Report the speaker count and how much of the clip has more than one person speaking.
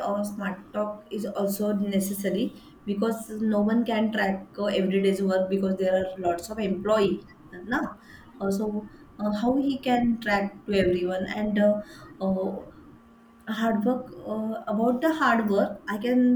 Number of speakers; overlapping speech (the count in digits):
1, no overlap